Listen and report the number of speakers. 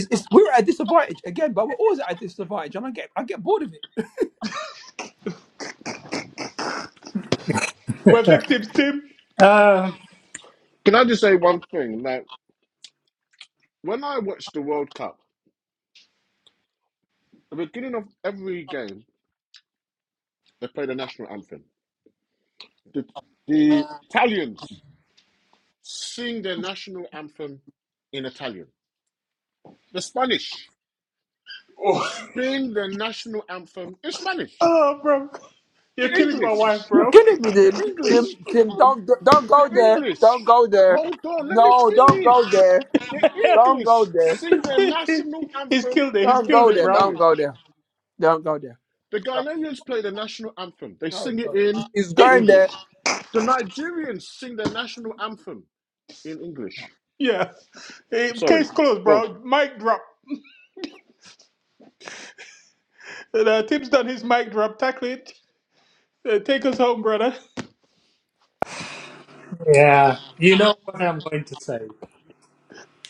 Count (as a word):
four